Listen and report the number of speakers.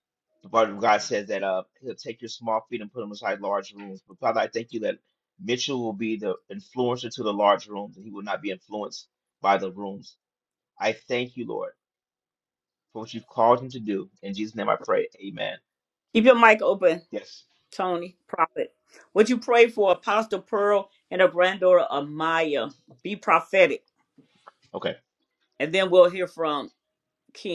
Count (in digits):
2